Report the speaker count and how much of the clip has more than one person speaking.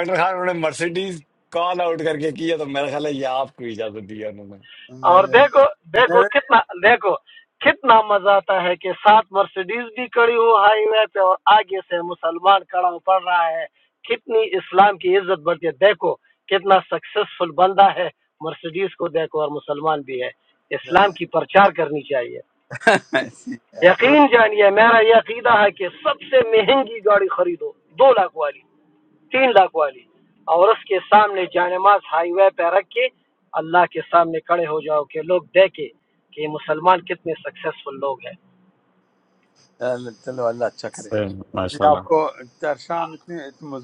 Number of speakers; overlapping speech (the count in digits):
3, about 2%